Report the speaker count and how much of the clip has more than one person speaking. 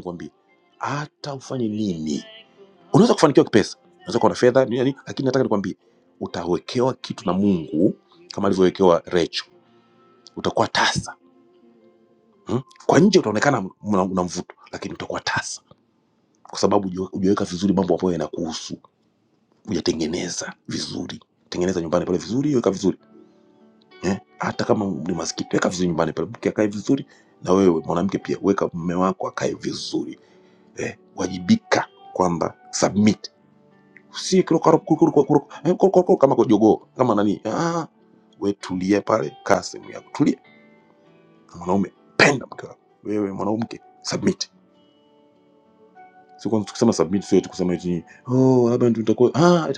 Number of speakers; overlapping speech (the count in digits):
1, no overlap